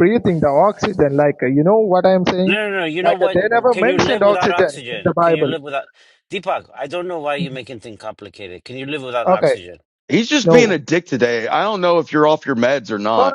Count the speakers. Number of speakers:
three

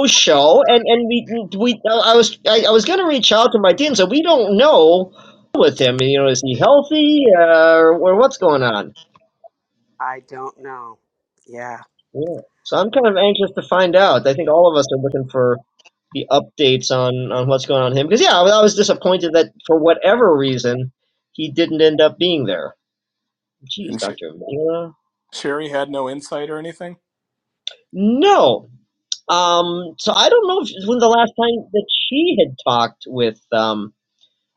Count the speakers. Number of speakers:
three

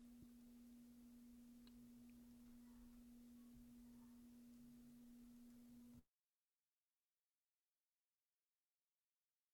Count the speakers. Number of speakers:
zero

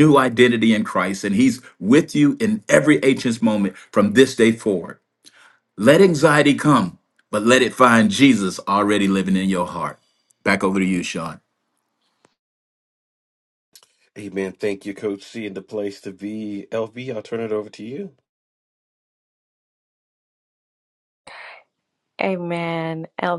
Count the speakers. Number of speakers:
three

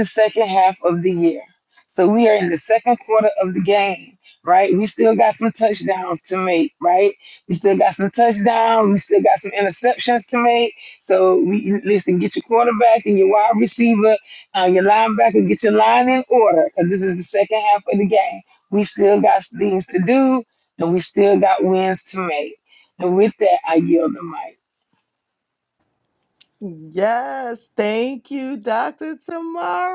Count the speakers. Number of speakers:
two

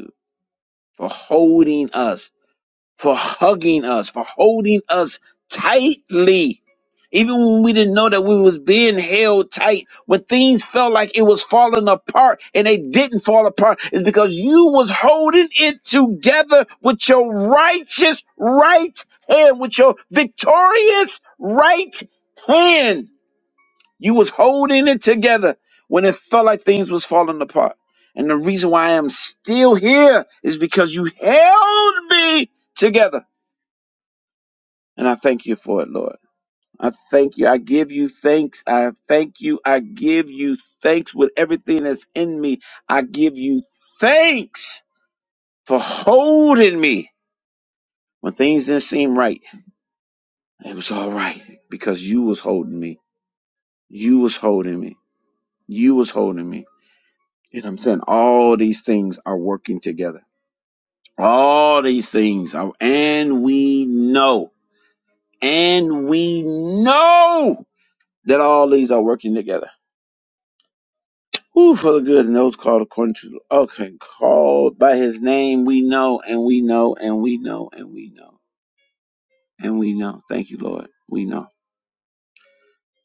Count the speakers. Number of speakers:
one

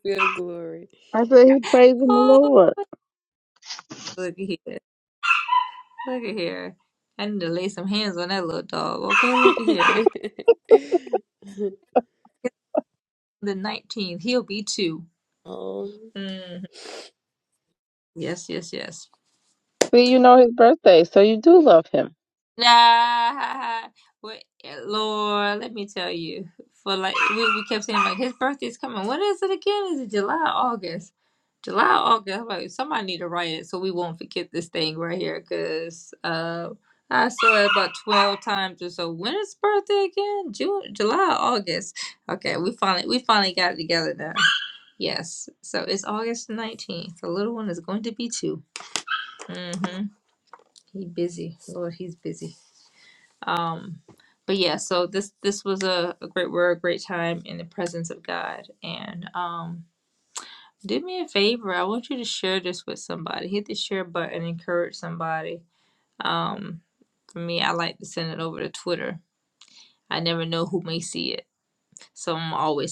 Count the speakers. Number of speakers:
three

